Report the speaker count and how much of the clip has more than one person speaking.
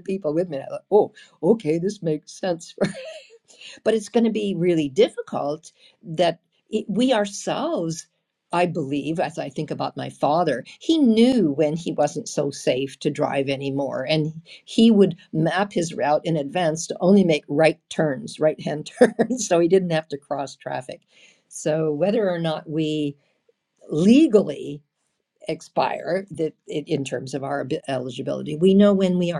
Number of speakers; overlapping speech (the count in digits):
1, no overlap